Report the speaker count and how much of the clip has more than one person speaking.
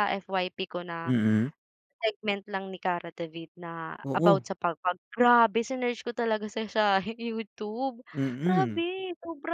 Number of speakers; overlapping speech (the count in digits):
2, about 9%